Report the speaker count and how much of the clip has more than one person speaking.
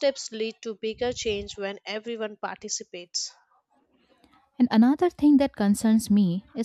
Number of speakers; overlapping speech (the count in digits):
2, no overlap